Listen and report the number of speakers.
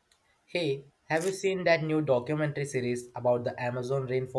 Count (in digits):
1